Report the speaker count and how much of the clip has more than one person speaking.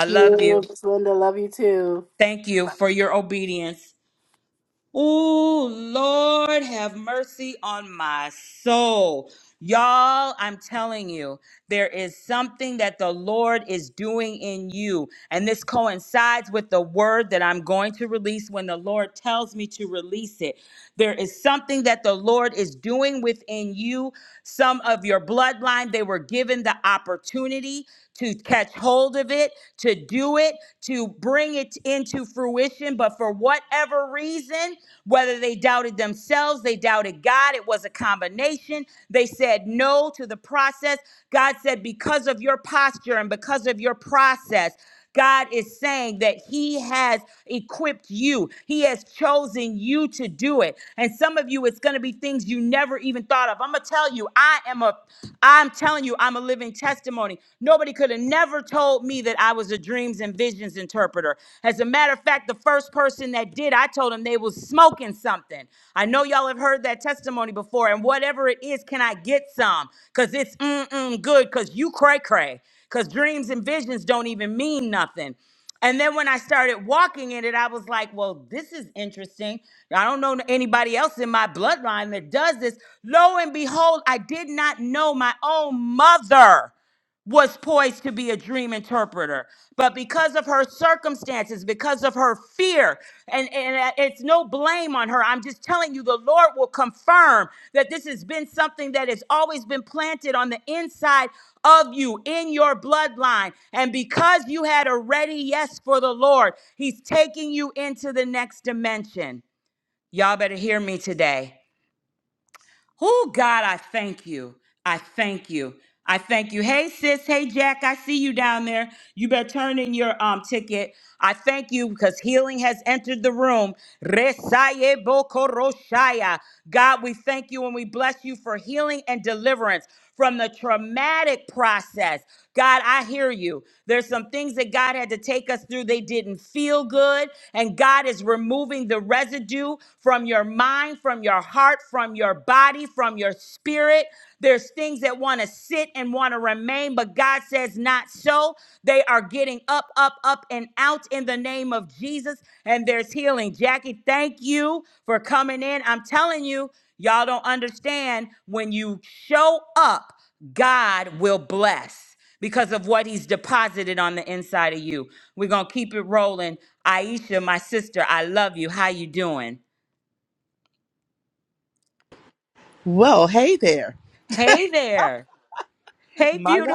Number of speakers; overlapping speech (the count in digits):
3, about 1%